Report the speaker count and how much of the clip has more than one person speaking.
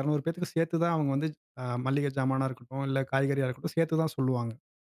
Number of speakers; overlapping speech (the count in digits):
1, no overlap